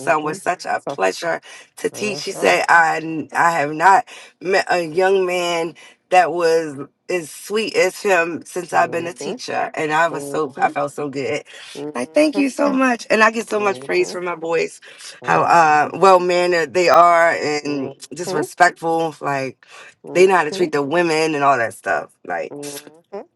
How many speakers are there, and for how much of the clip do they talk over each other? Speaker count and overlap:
two, about 18%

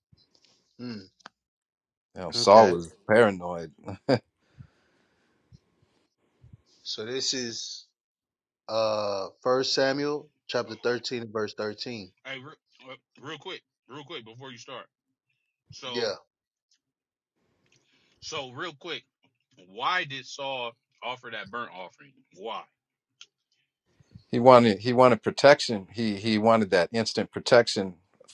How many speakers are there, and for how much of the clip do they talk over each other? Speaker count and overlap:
three, about 2%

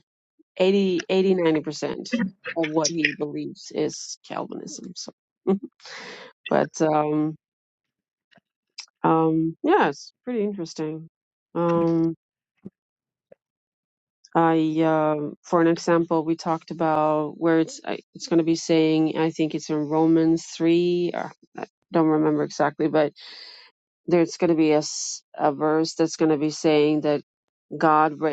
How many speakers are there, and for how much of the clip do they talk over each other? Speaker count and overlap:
one, no overlap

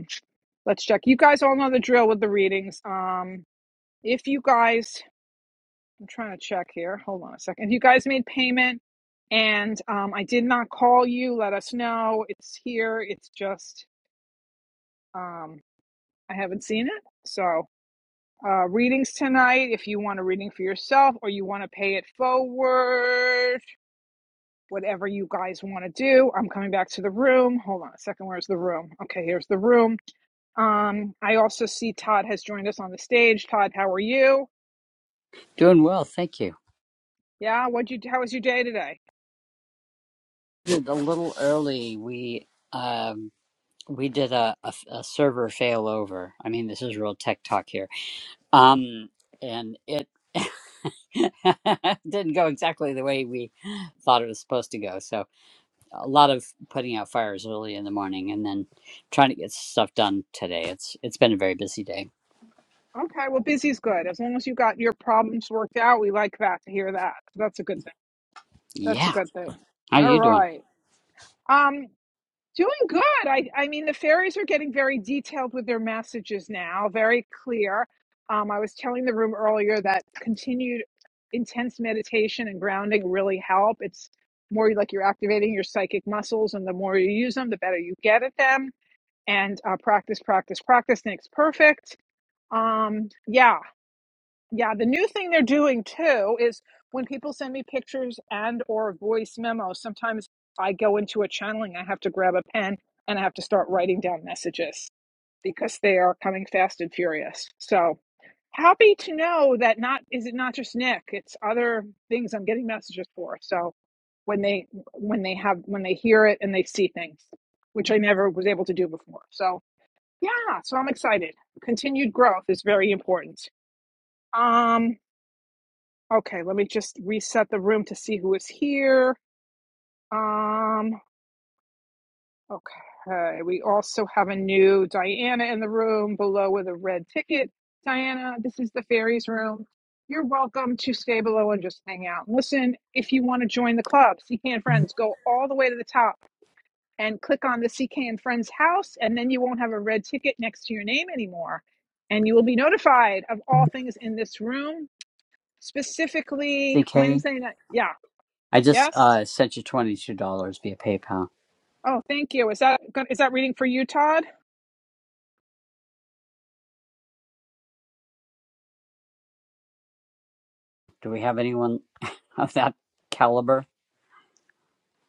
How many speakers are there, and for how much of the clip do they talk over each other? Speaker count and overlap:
two, about 1%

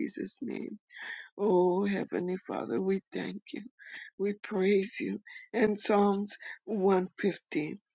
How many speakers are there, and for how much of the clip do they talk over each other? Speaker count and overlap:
one, no overlap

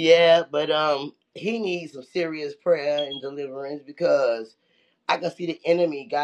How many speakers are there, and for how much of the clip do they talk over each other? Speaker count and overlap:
one, no overlap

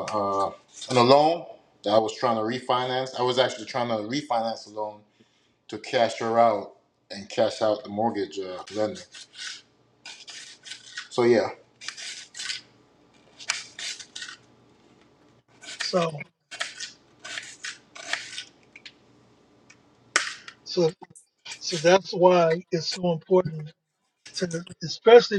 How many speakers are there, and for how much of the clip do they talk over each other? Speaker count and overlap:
two, no overlap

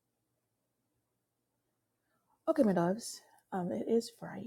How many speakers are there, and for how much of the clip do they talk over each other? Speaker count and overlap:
one, no overlap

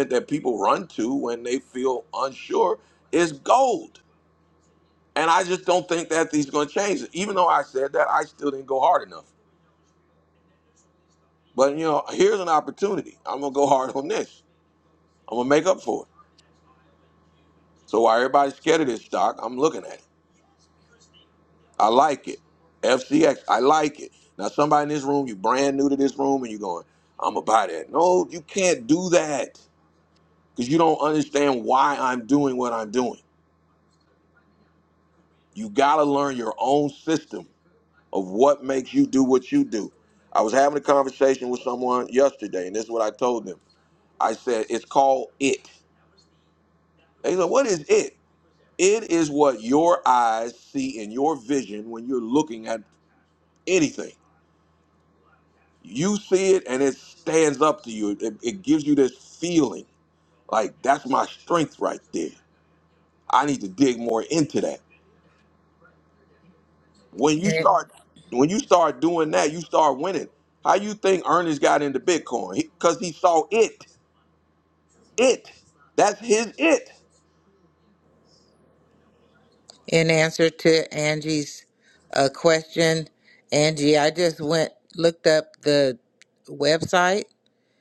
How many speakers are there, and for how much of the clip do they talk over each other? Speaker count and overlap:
two, under 1%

